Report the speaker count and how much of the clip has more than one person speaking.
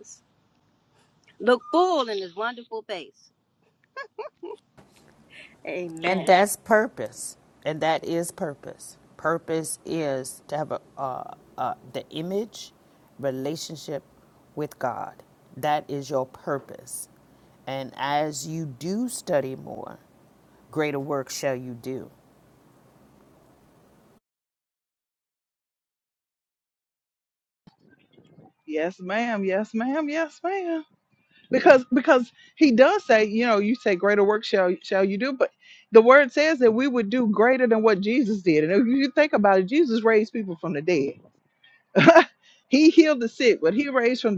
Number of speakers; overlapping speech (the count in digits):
3, about 1%